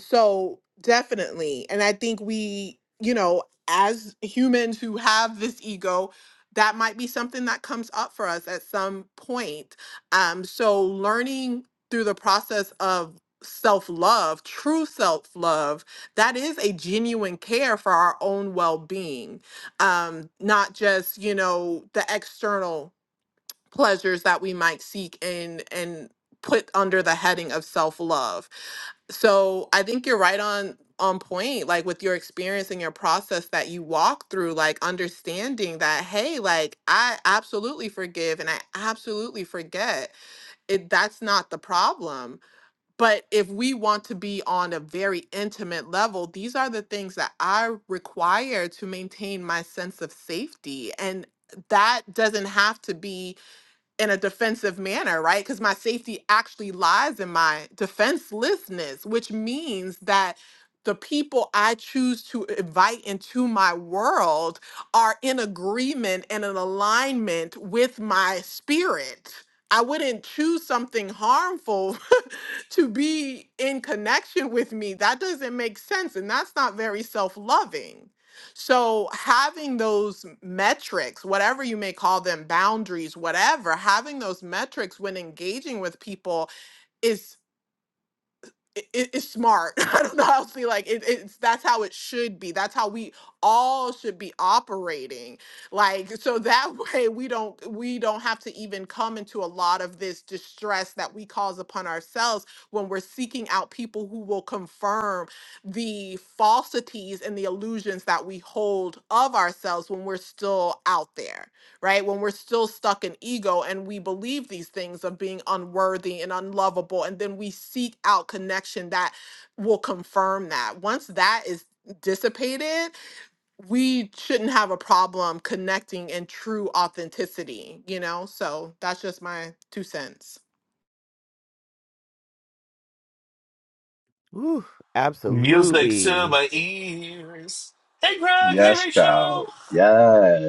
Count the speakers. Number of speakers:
4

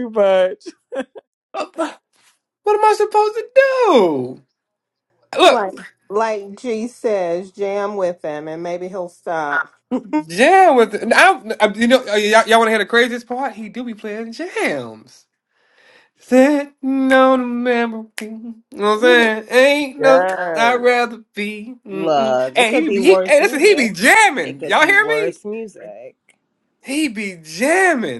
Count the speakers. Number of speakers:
4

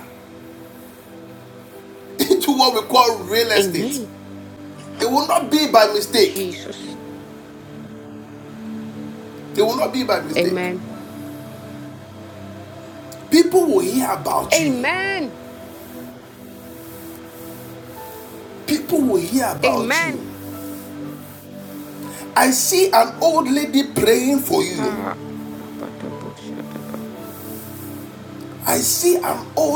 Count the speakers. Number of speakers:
2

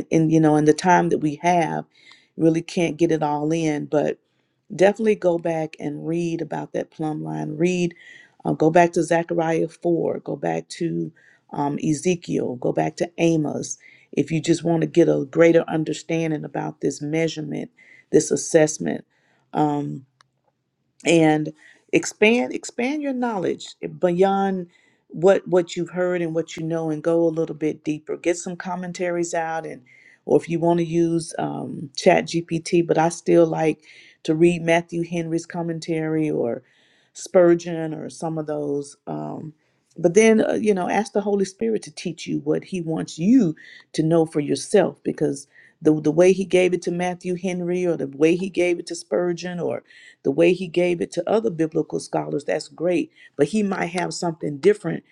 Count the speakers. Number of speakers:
1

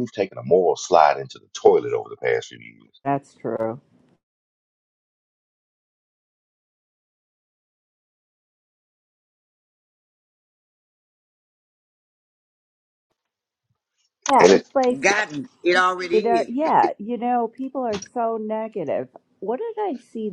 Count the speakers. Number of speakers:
3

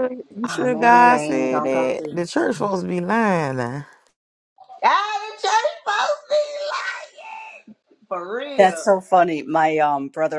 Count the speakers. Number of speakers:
3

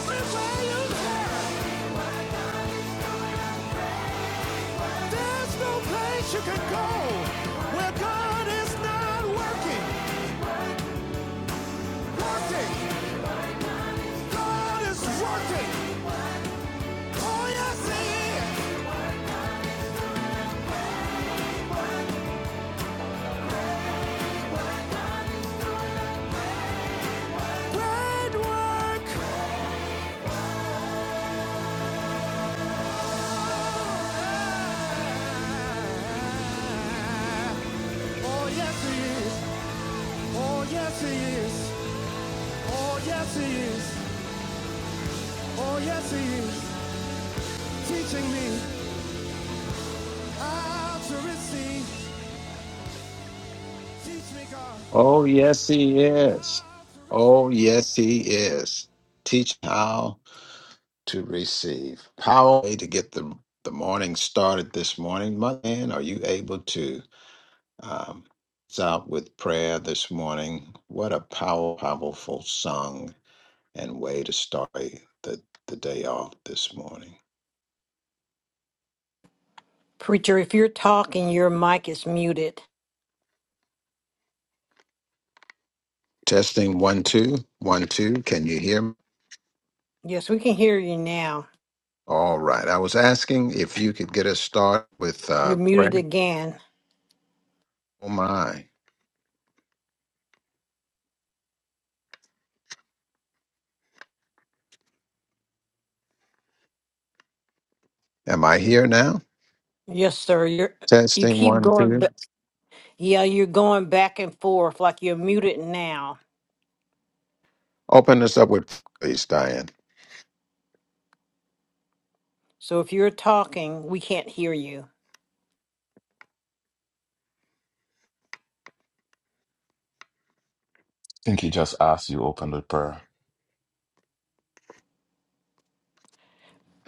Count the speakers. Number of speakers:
4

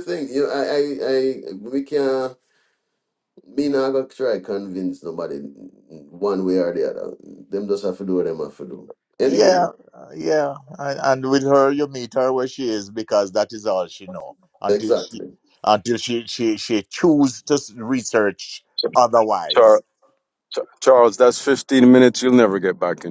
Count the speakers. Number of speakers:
3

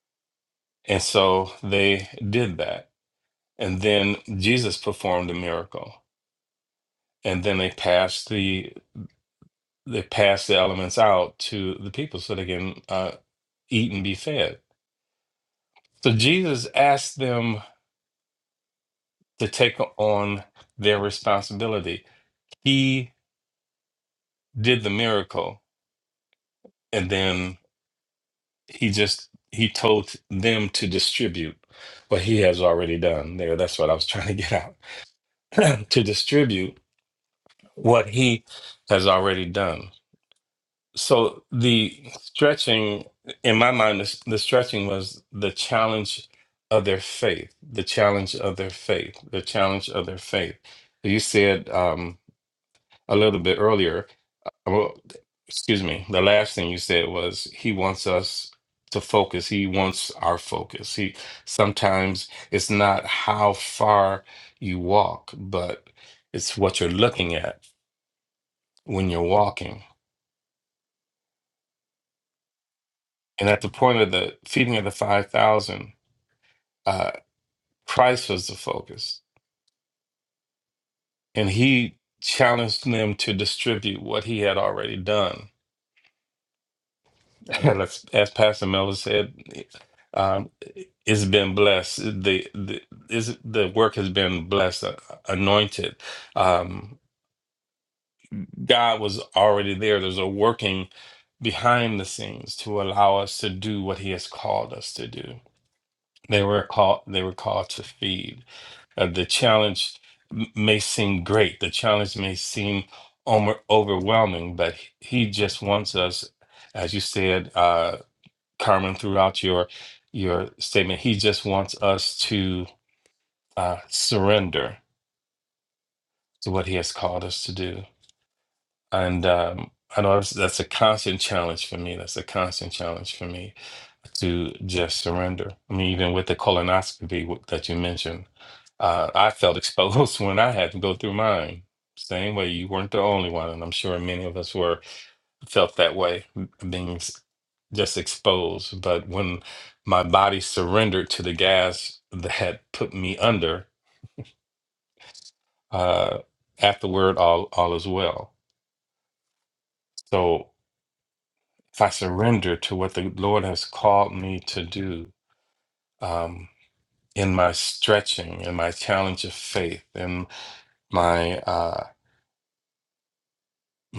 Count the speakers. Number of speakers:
1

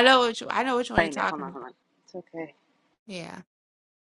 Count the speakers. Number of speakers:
2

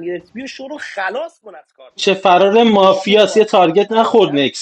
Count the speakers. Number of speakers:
2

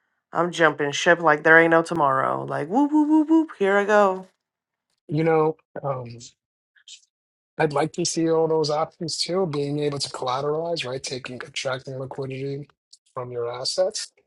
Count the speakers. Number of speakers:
2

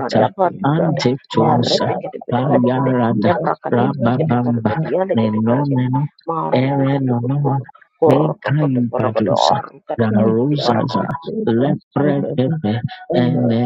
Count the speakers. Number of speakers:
3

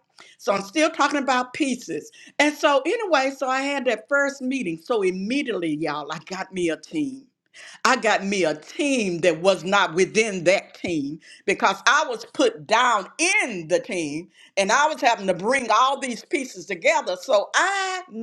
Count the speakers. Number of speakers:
1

